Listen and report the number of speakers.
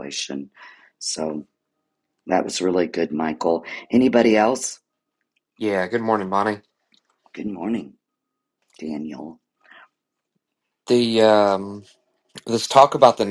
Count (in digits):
2